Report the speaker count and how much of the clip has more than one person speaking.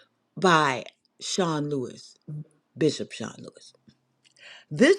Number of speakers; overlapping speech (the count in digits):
1, no overlap